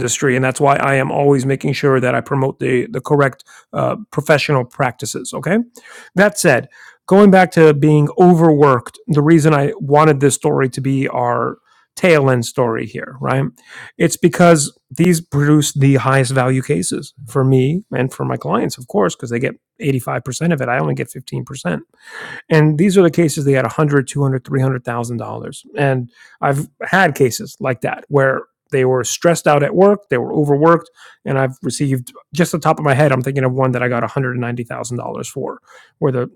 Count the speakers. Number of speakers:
one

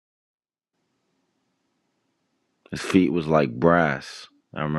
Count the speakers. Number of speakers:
one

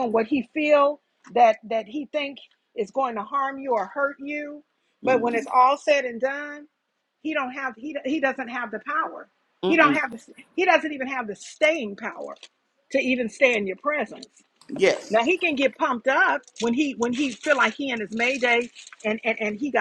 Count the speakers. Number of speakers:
two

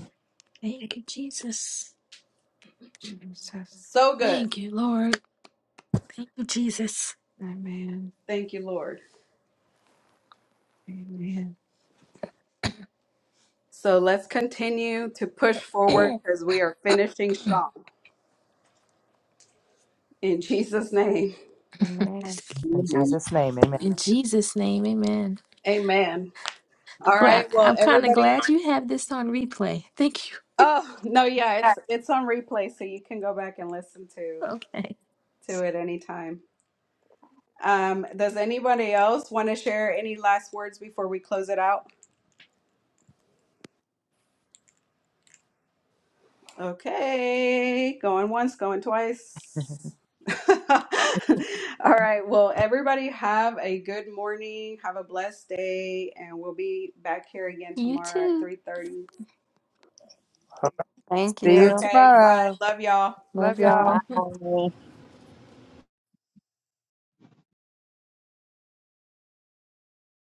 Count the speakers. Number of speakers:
five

